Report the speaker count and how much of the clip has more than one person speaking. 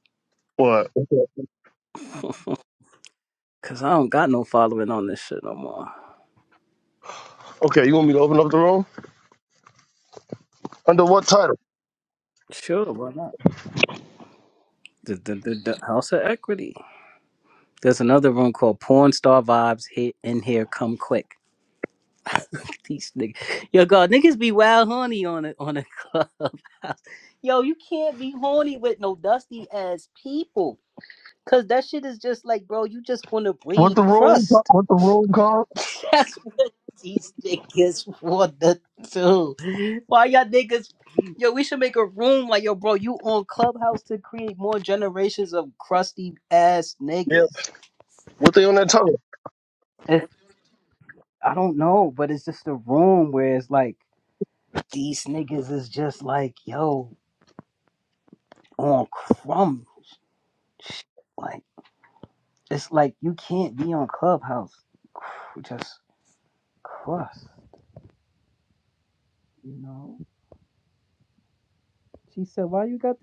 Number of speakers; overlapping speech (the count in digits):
2, about 2%